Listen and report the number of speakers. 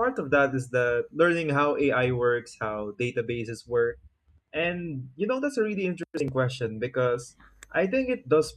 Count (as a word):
one